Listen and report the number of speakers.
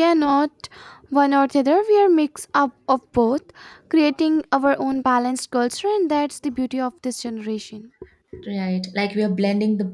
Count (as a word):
two